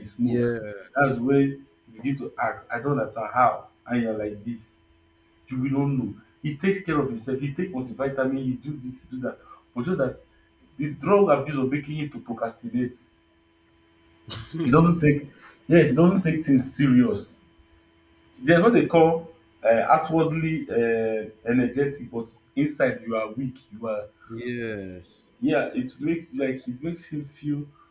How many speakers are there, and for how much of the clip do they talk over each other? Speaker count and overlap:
two, about 1%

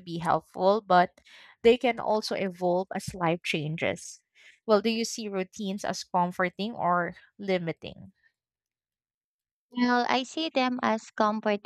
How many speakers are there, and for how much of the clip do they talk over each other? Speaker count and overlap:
two, no overlap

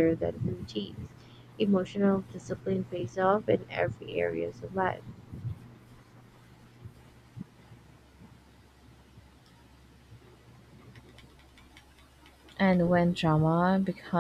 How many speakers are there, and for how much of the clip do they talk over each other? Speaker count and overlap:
two, no overlap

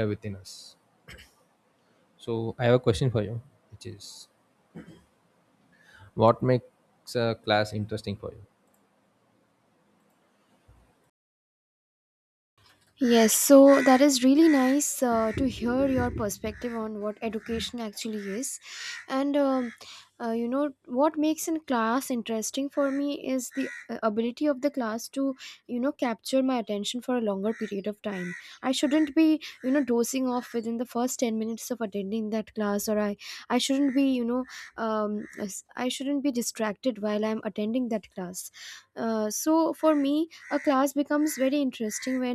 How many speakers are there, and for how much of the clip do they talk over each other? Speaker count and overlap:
two, no overlap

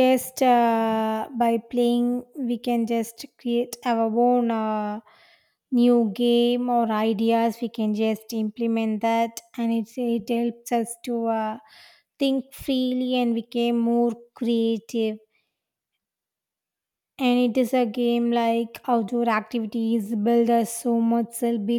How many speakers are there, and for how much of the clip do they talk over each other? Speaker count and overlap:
one, no overlap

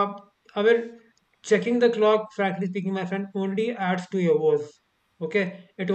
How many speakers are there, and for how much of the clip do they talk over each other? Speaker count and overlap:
one, no overlap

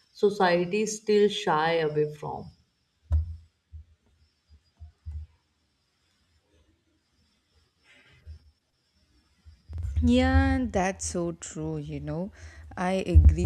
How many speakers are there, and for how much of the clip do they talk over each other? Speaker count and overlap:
two, no overlap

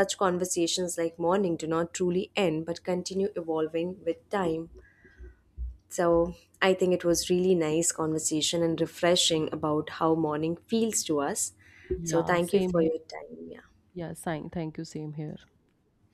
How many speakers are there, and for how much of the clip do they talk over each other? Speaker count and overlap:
two, about 5%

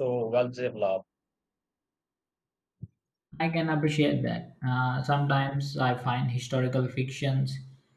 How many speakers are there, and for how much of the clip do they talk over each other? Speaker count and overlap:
two, no overlap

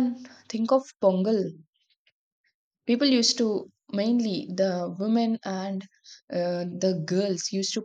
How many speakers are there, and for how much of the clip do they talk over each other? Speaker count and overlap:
one, no overlap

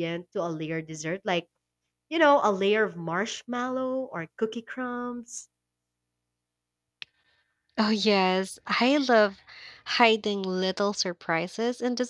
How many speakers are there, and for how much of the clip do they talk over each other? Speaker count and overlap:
two, no overlap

